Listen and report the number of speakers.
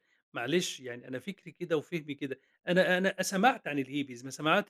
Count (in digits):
1